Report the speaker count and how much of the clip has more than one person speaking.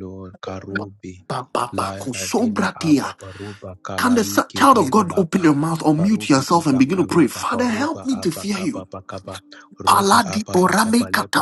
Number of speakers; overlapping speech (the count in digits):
2, about 64%